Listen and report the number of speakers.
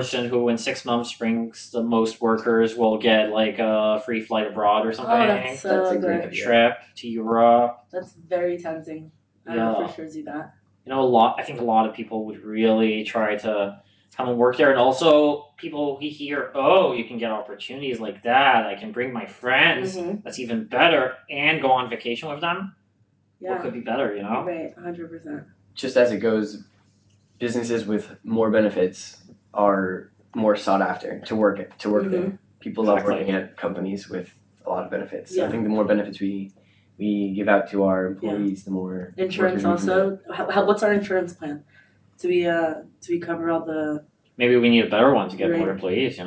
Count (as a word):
three